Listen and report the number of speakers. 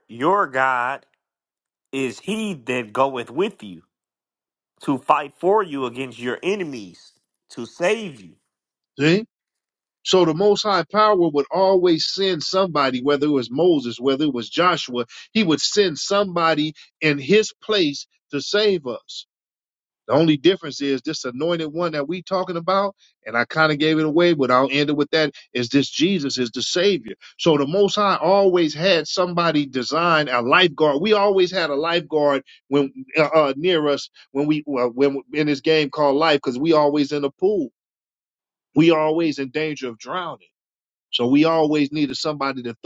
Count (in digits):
2